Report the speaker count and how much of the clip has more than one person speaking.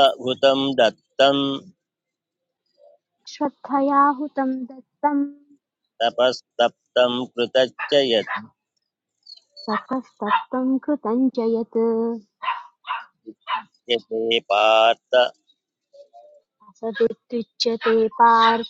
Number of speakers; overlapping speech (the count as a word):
two, no overlap